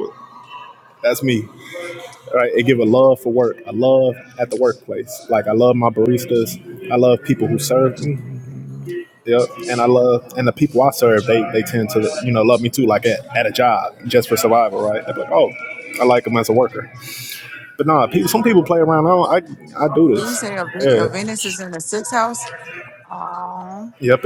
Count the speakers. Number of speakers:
two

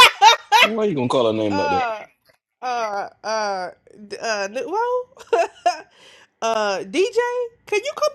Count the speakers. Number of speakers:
two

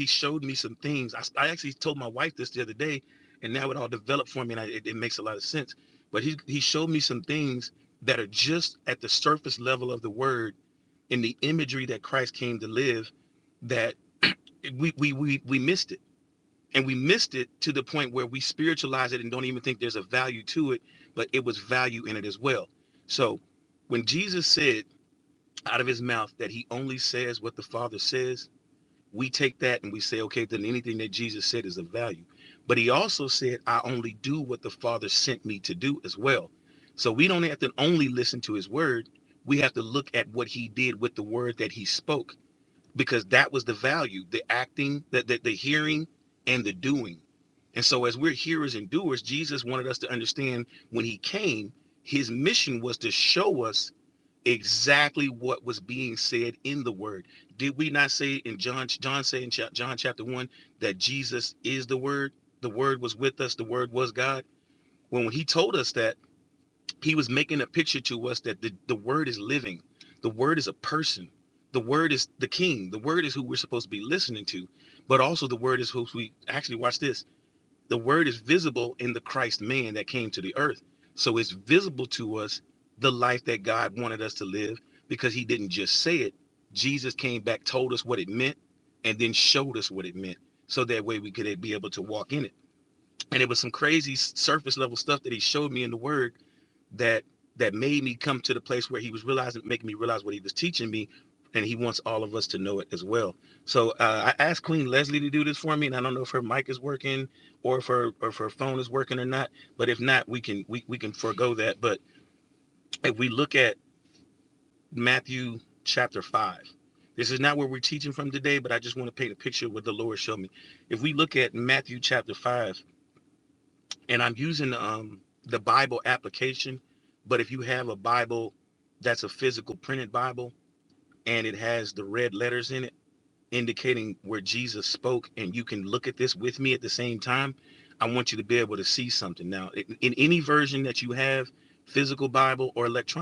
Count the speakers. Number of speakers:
one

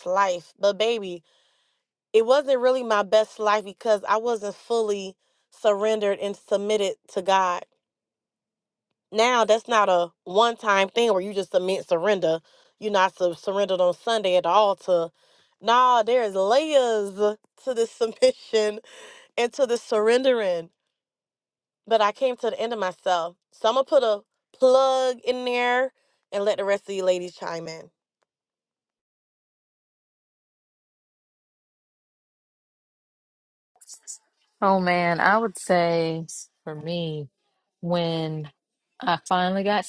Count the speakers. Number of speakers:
two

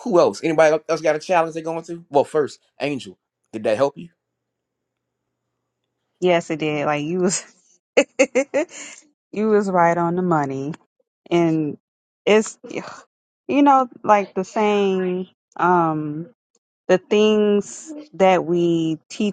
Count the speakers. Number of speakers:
two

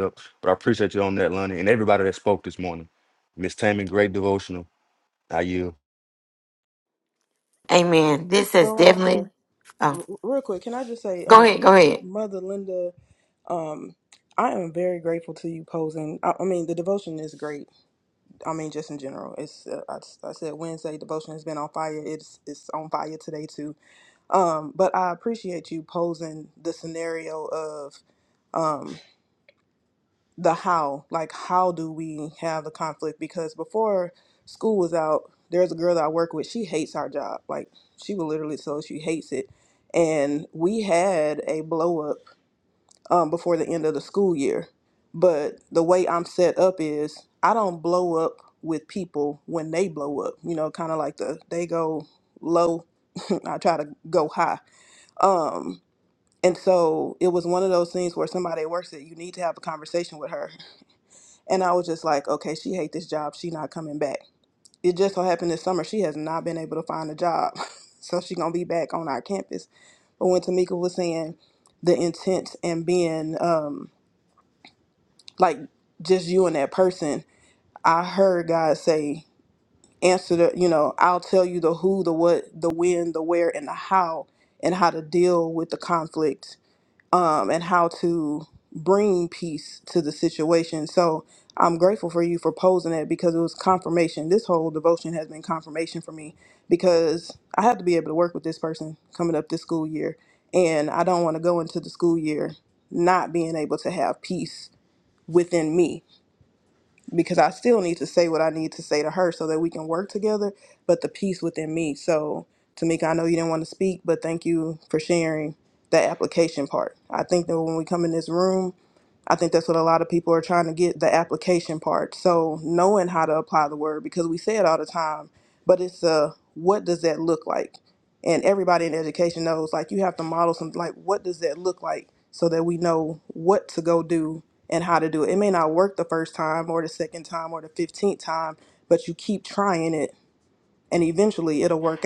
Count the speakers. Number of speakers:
three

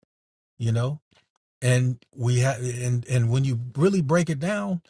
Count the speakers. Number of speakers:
one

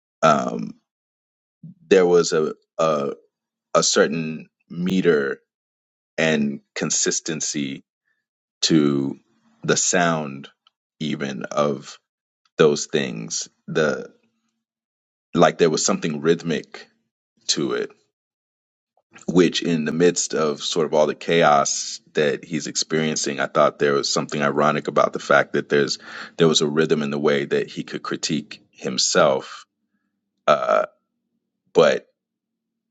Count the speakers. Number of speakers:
one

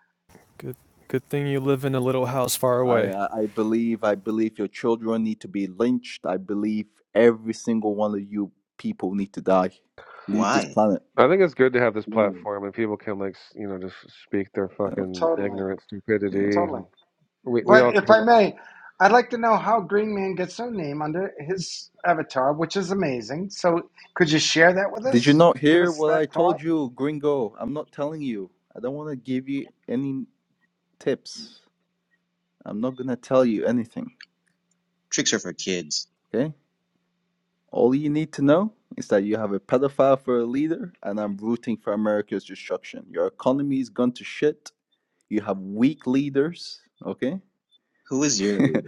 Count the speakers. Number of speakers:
five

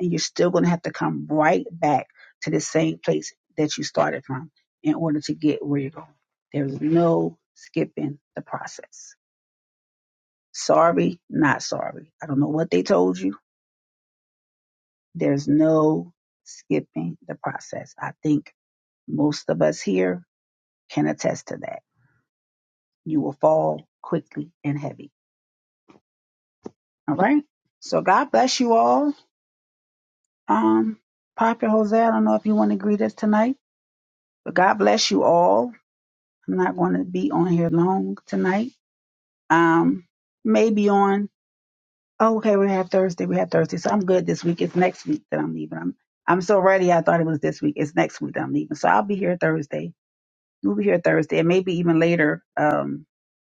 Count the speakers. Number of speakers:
one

